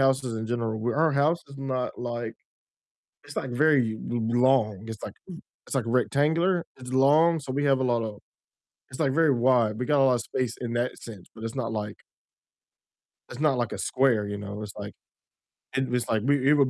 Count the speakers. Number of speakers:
one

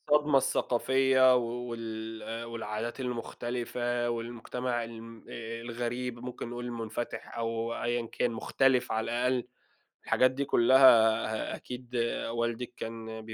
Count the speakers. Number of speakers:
one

